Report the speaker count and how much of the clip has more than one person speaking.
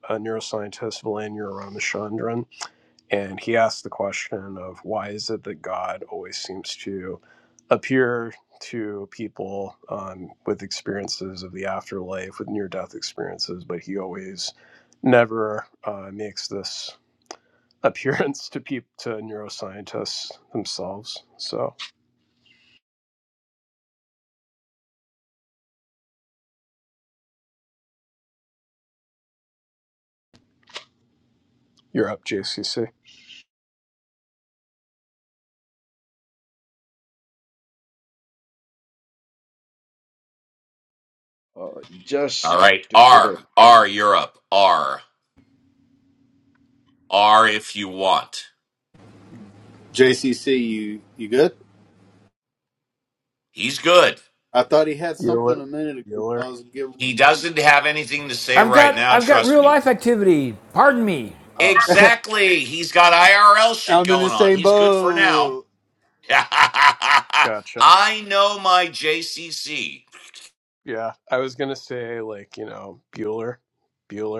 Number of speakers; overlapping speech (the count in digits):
5, about 6%